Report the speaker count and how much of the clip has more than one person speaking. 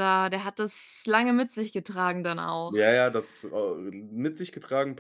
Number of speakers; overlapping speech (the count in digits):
2, about 4%